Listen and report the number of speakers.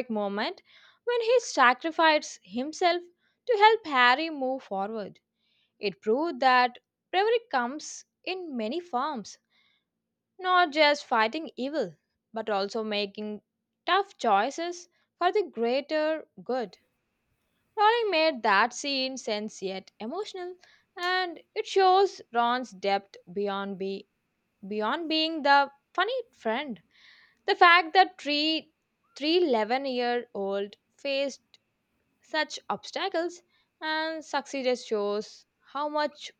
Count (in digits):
1